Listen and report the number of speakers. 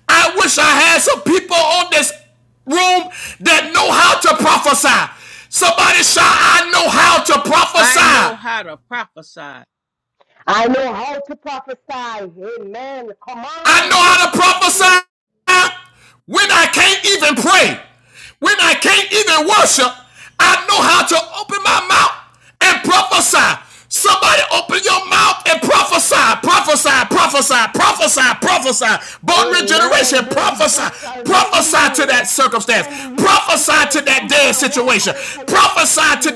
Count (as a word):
three